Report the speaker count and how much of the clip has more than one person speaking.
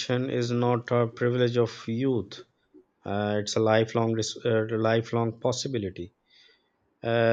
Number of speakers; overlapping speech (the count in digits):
1, no overlap